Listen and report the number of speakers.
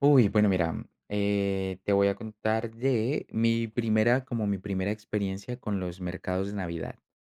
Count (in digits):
1